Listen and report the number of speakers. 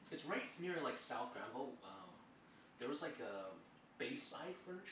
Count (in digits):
1